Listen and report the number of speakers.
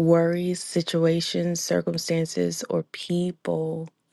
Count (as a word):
one